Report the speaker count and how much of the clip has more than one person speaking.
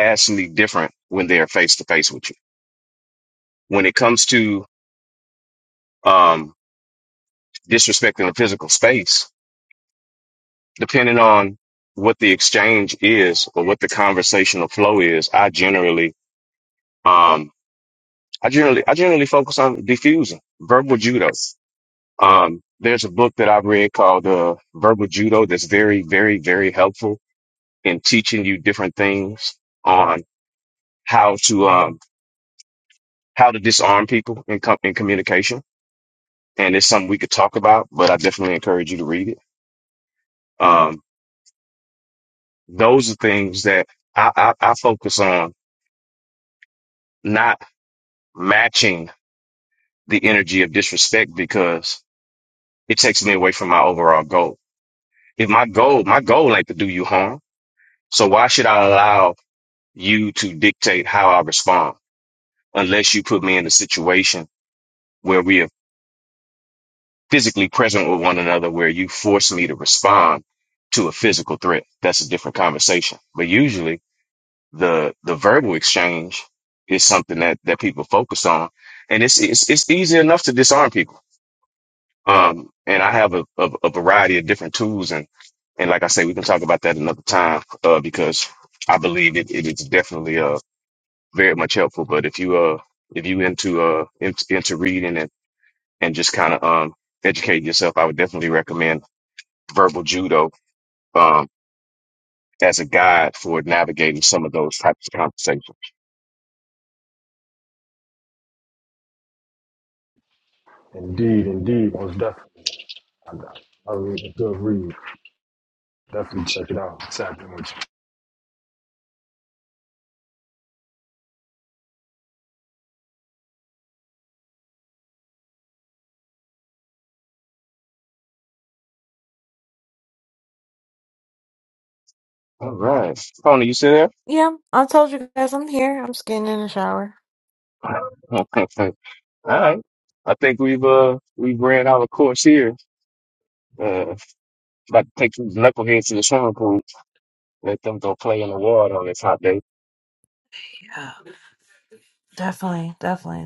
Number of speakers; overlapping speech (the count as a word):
three, no overlap